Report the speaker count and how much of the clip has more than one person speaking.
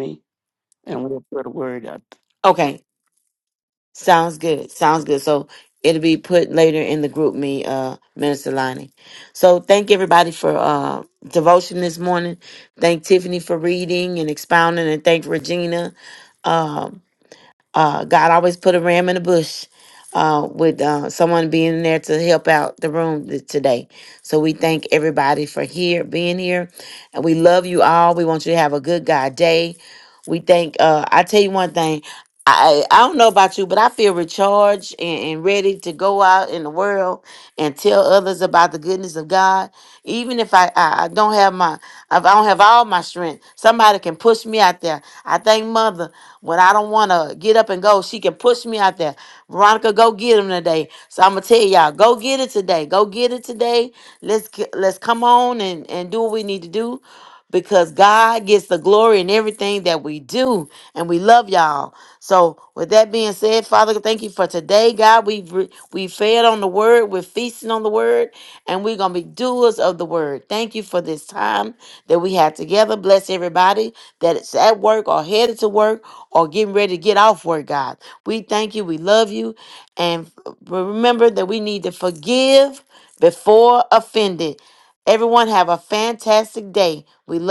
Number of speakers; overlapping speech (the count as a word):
two, no overlap